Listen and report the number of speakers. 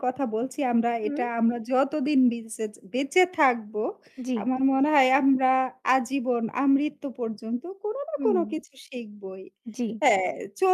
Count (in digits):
2